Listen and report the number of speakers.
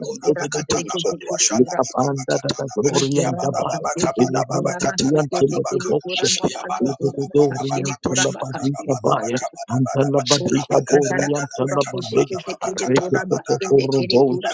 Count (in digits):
3